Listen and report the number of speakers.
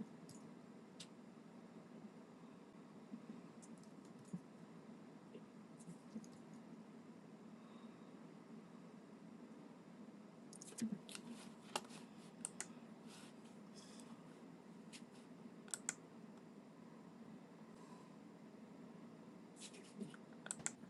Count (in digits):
0